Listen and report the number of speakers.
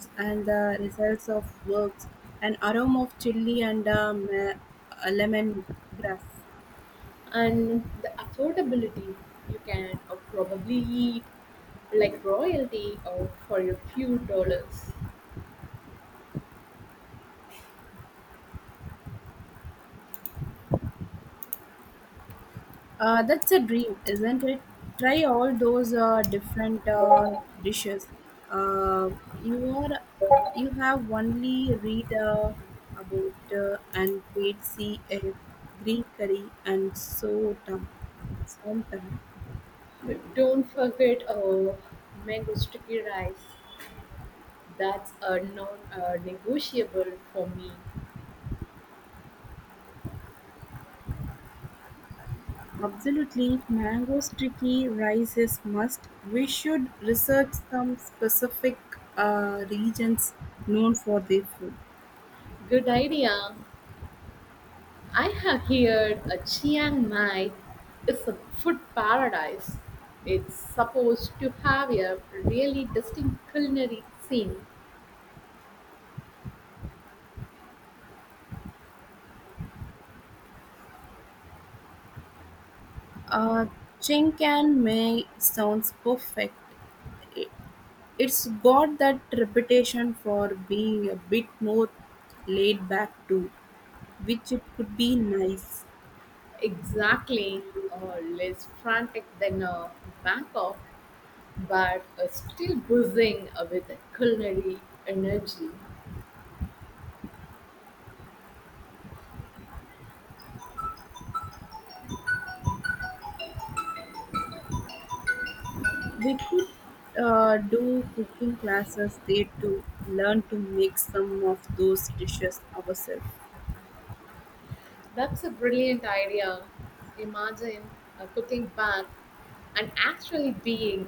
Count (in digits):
2